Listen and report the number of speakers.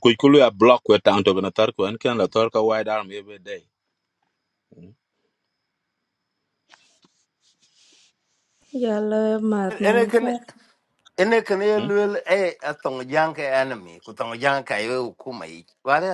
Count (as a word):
three